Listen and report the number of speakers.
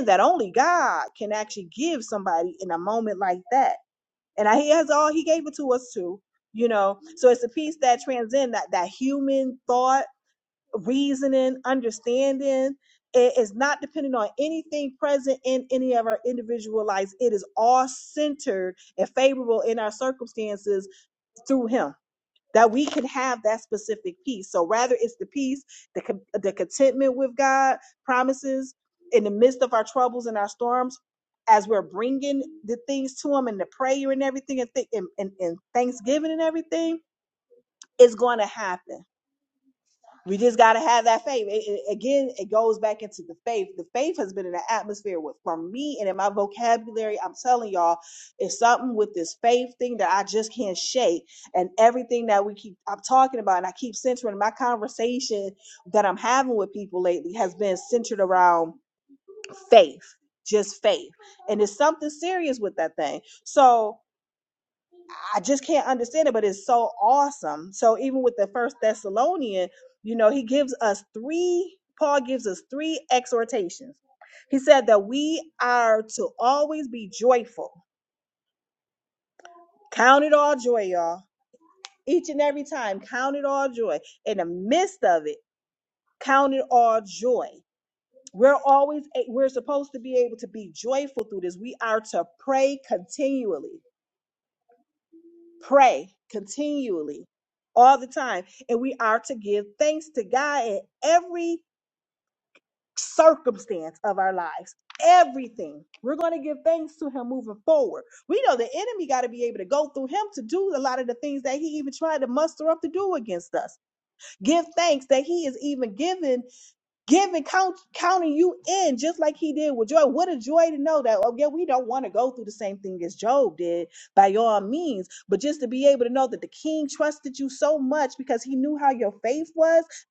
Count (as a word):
one